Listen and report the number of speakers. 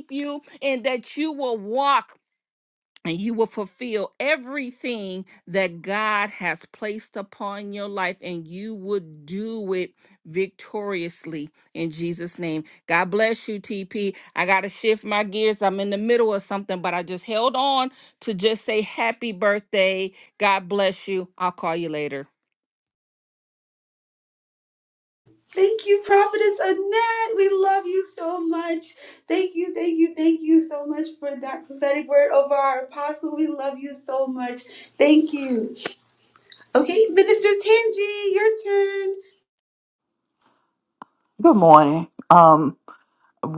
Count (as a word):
three